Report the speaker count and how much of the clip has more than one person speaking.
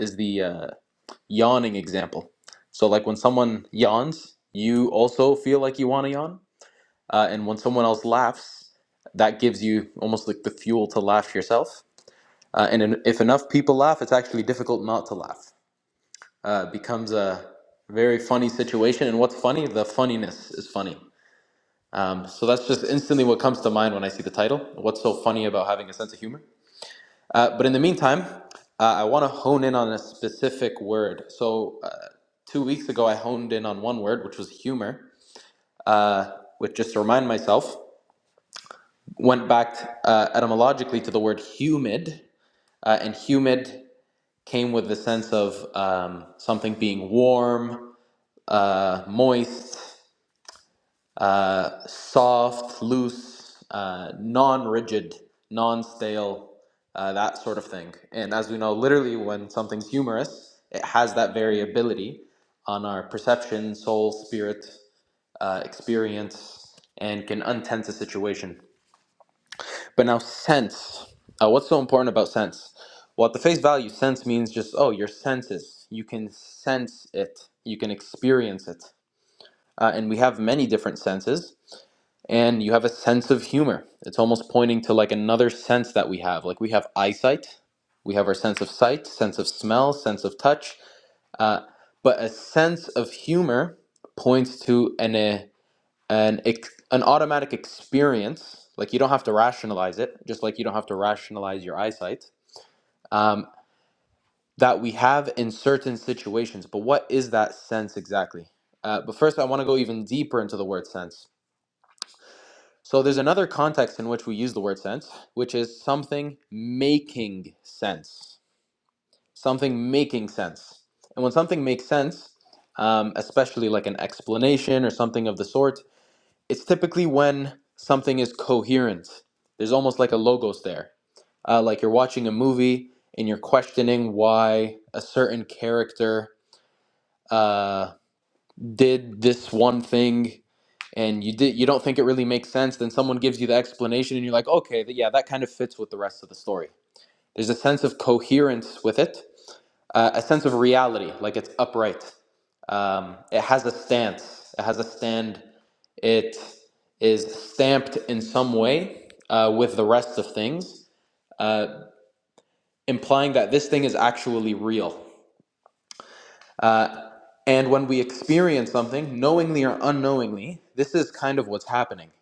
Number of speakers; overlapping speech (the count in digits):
1, no overlap